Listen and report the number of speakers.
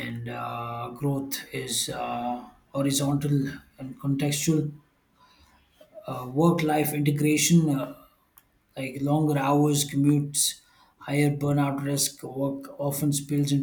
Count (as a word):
one